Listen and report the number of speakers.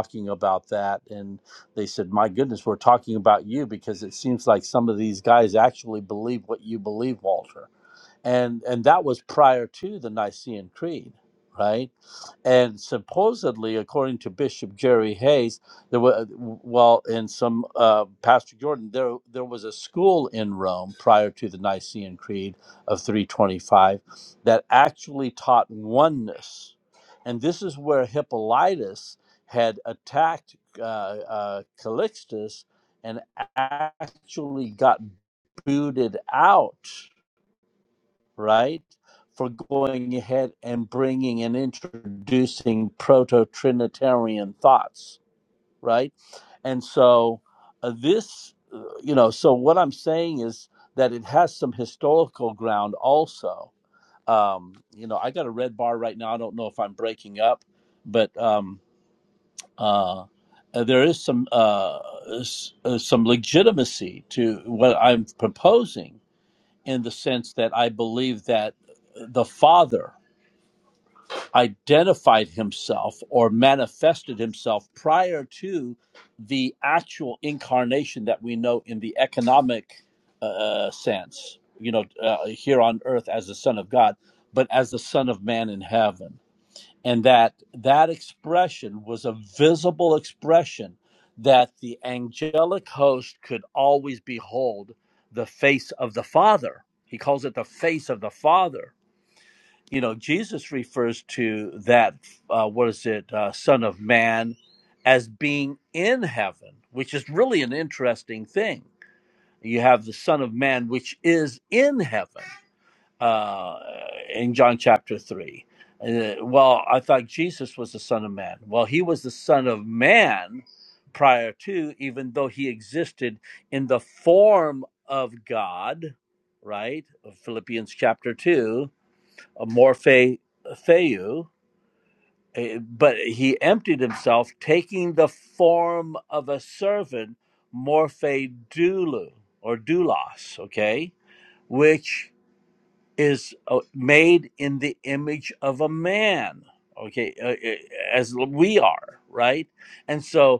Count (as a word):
one